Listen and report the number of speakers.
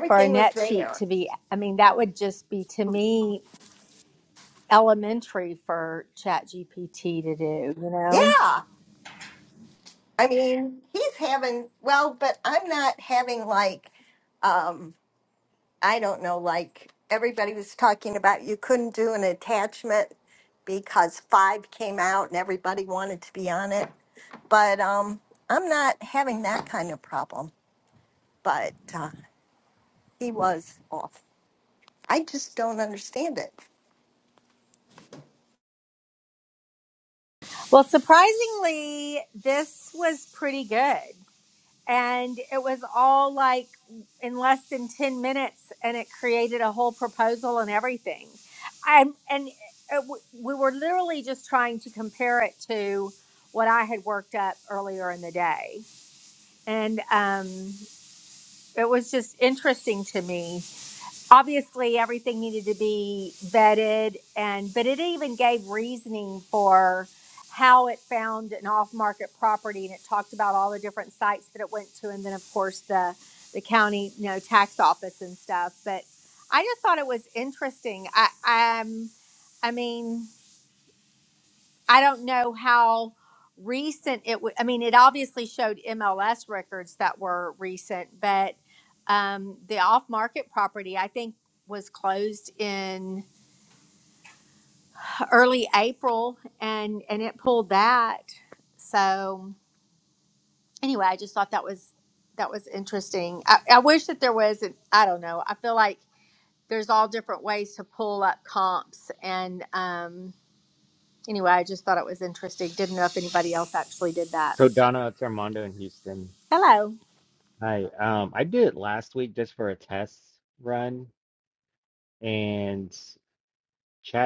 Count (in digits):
3